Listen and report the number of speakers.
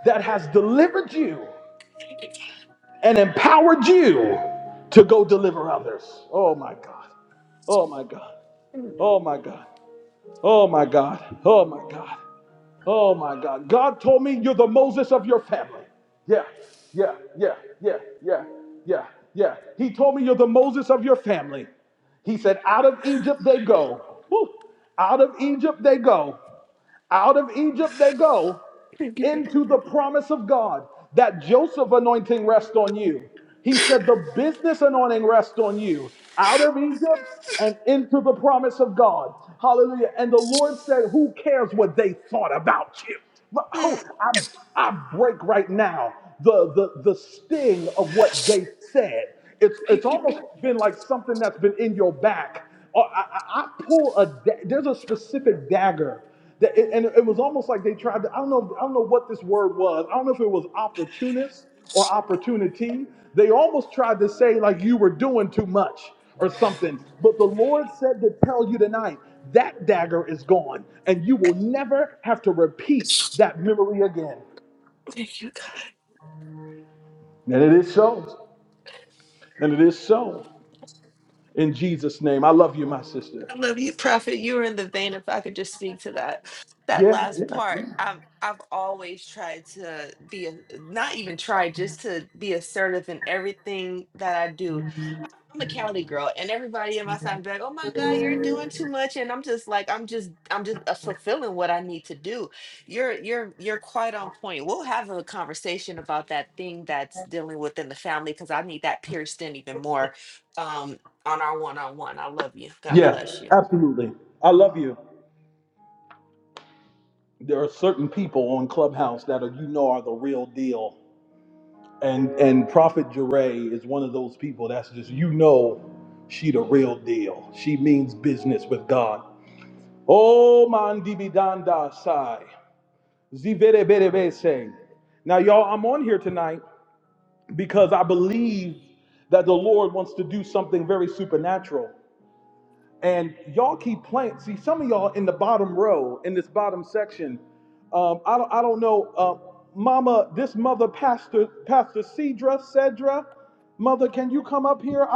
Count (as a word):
two